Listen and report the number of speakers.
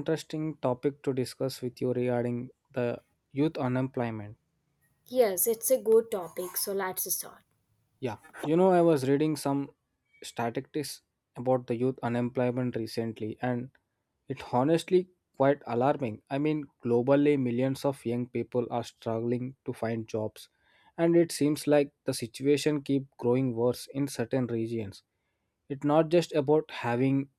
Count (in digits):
2